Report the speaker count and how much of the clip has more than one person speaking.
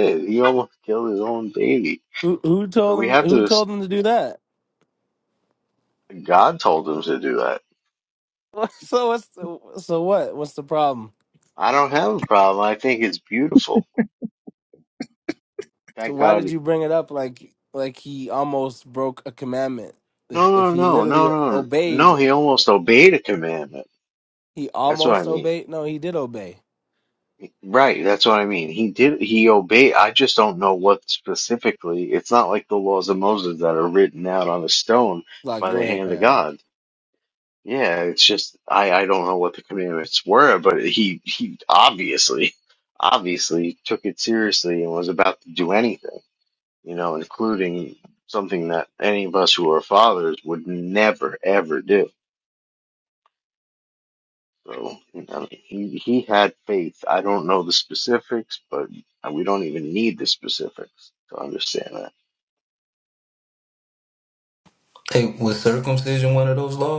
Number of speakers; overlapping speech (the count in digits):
3, about 7%